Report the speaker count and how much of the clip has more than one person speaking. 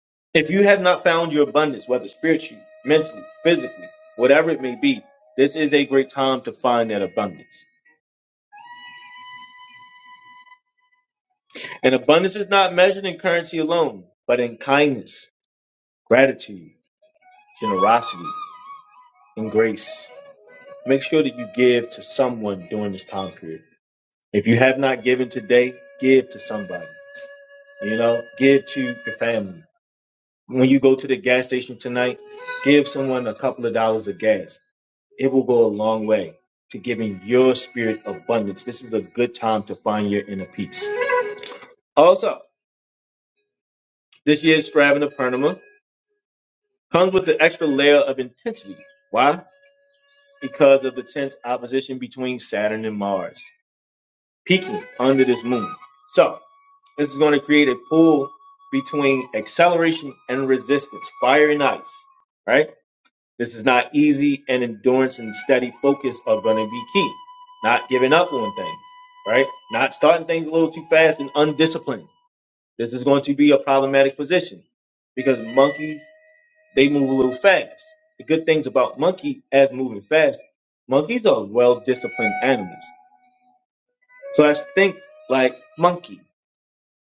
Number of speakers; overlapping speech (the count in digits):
1, no overlap